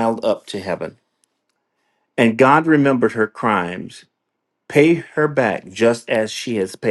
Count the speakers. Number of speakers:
1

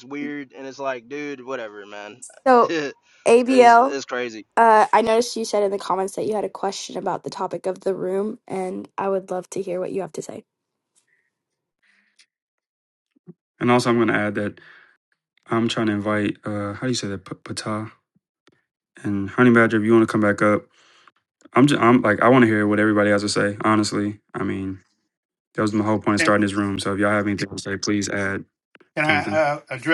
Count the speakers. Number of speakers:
4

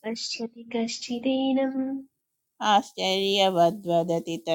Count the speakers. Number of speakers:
2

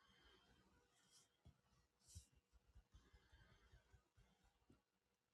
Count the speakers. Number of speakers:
0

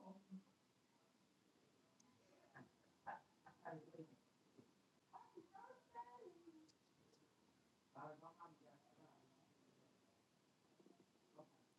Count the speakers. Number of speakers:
0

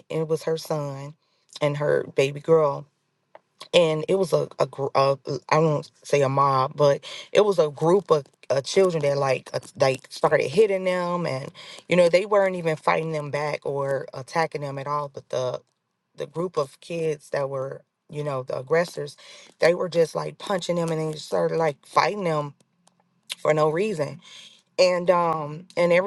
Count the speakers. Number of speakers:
1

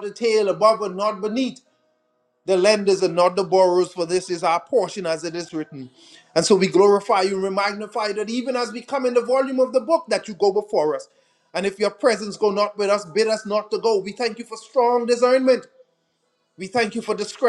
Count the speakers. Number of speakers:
1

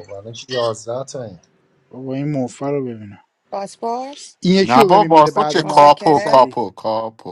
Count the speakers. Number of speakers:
4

